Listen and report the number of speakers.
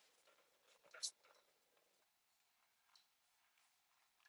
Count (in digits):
0